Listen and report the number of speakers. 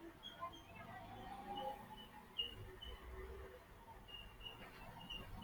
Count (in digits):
0